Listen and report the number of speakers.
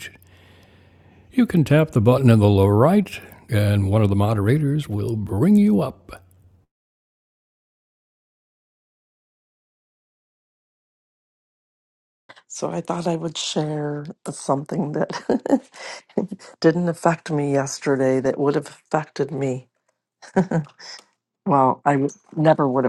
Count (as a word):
two